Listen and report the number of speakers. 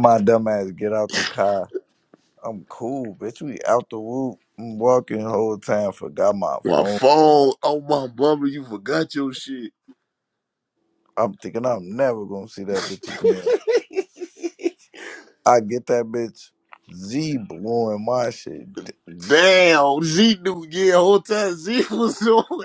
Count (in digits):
2